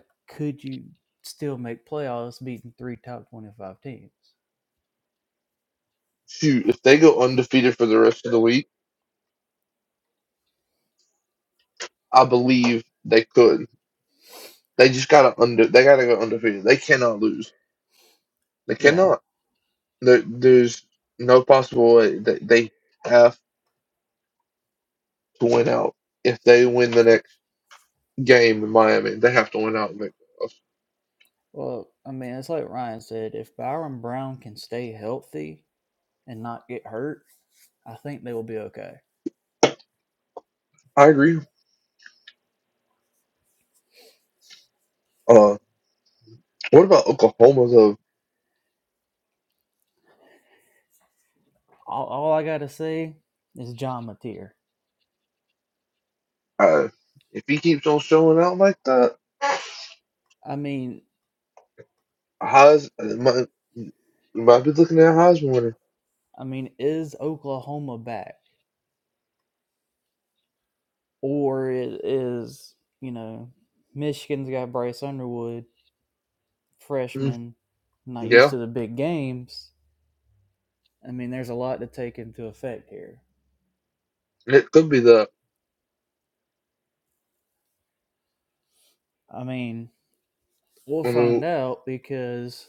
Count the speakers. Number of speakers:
two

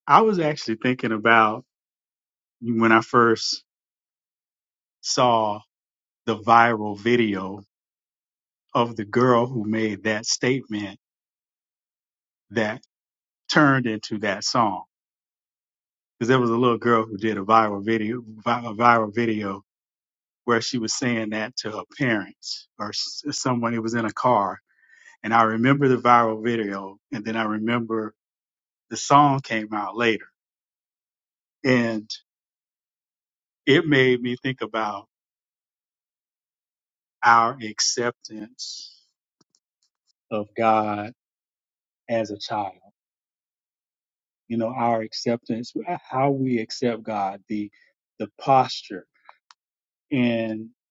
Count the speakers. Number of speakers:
one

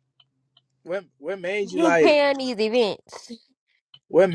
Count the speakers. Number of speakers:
two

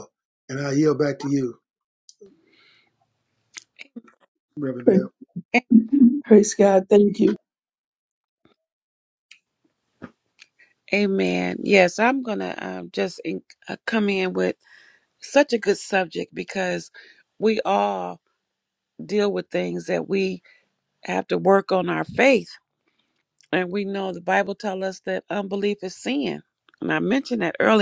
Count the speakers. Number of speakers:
three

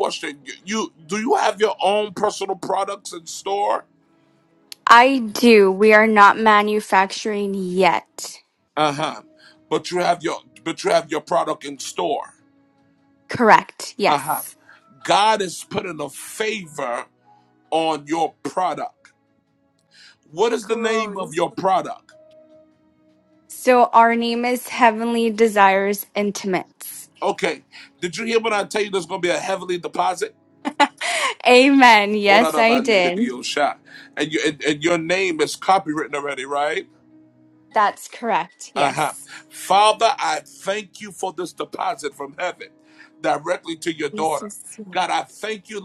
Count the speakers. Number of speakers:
two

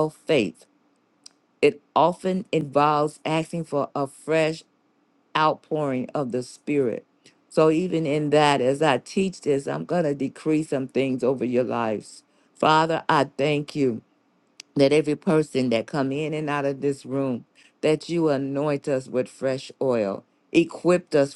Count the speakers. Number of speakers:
one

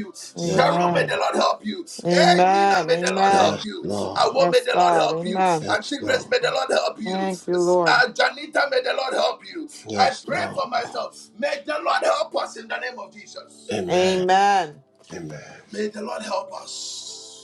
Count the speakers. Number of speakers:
three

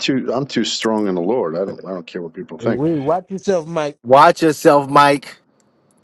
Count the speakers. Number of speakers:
three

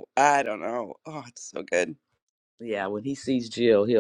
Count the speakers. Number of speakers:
two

